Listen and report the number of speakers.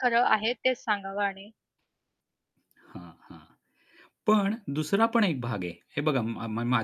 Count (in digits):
2